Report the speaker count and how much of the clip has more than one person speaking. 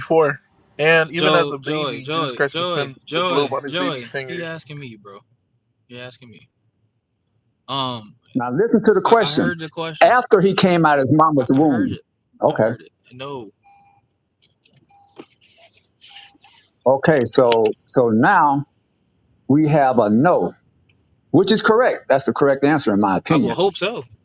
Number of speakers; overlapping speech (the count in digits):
3, about 21%